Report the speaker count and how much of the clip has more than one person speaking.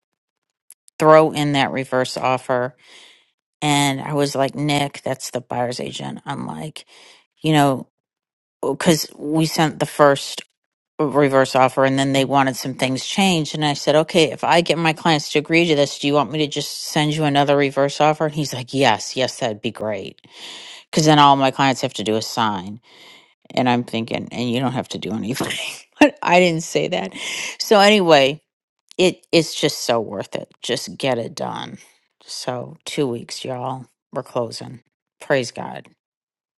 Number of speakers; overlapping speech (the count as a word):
one, no overlap